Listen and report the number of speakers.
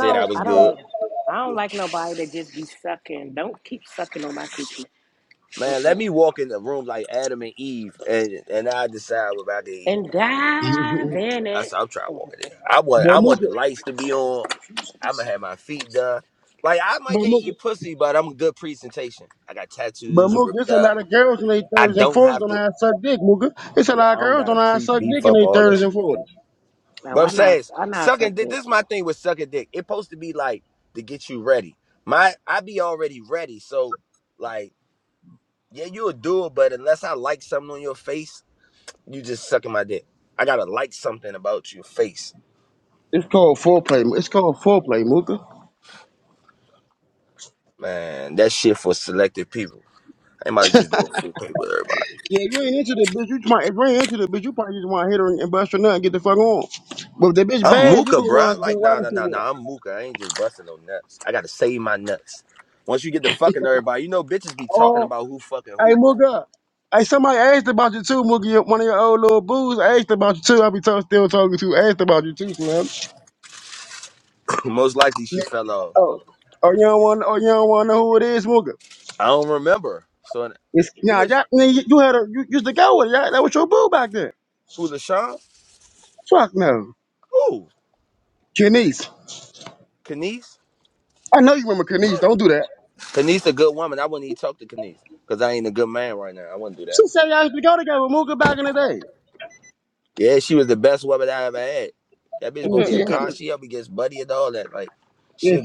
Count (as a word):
three